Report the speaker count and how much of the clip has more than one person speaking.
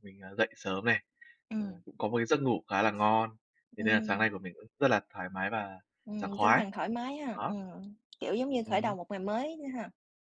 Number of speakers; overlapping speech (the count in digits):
2, about 14%